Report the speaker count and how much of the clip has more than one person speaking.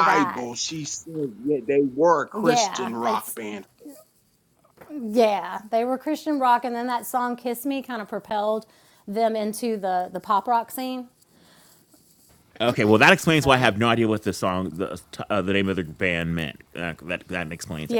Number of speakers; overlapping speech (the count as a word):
three, about 9%